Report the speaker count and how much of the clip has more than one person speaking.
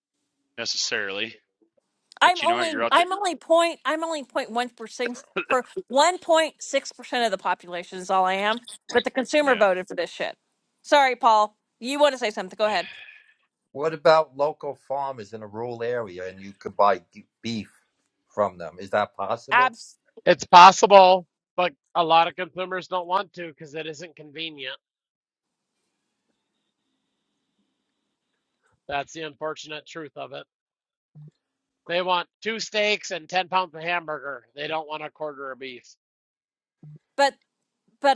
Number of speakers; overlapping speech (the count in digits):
4, about 3%